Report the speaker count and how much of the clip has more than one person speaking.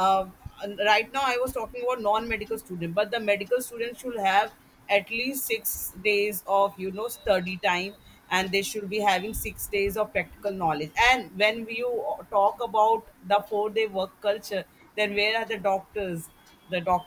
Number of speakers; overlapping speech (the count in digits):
1, no overlap